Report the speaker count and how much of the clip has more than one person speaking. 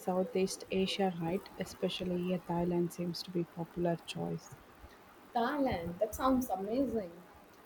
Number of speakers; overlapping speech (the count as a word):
two, no overlap